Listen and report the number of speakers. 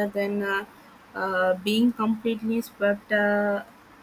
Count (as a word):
one